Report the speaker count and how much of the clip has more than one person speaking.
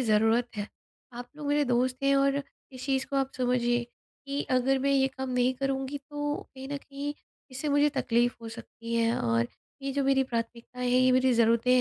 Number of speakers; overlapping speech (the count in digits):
1, no overlap